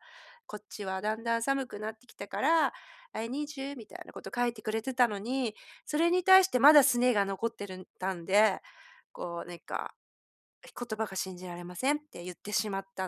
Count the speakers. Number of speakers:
1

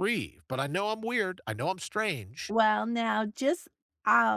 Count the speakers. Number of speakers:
2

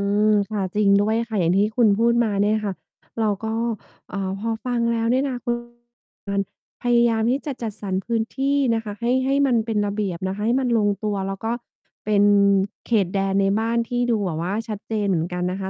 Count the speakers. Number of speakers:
1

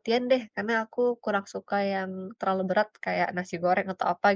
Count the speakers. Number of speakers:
1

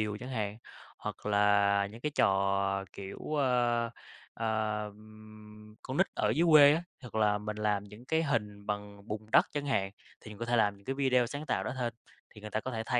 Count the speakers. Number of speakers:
1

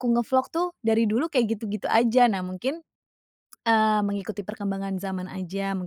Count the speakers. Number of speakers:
1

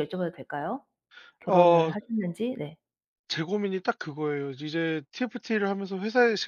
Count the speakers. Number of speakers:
2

